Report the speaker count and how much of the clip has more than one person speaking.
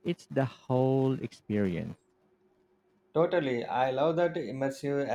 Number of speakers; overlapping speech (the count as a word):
two, no overlap